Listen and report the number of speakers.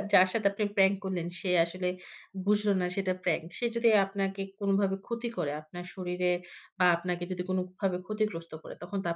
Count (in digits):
1